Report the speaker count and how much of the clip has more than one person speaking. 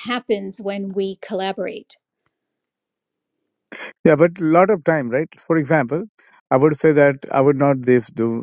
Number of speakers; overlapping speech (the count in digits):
2, no overlap